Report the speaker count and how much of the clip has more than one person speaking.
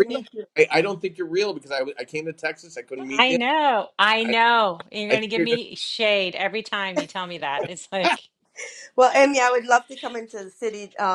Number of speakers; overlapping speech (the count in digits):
3, about 13%